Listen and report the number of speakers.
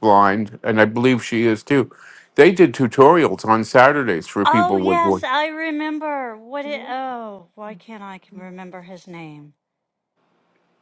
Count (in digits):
2